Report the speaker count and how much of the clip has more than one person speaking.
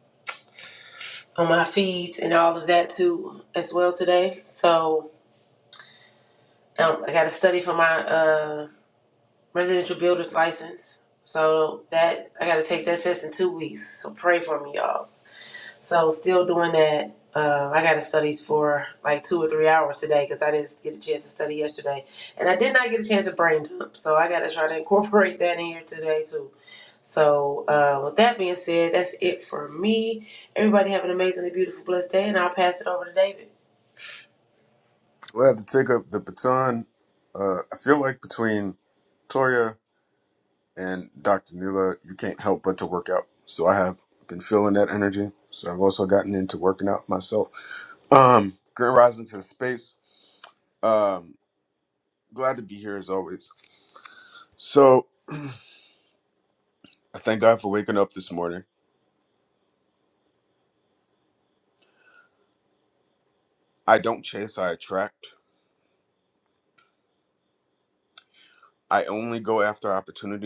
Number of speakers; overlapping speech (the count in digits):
2, no overlap